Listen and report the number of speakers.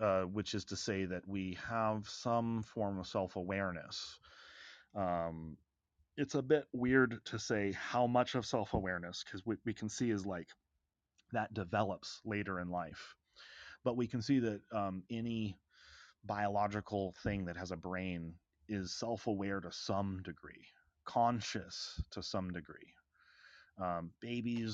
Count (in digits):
1